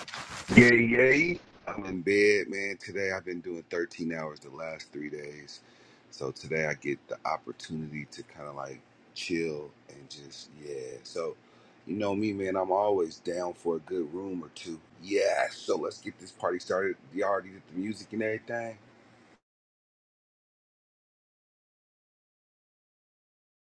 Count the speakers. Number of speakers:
one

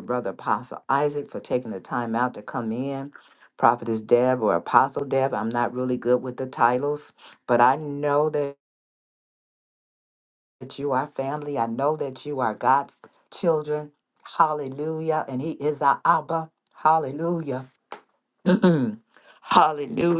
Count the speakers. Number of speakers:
one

